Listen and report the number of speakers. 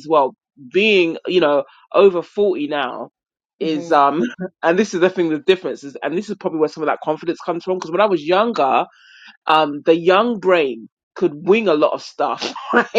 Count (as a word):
one